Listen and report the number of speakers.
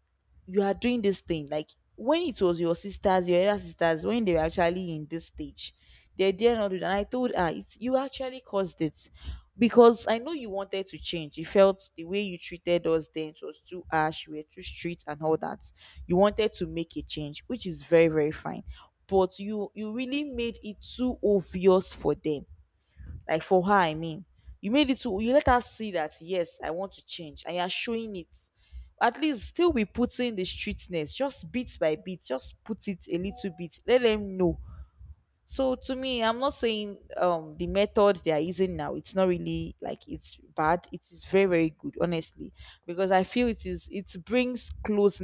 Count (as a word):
one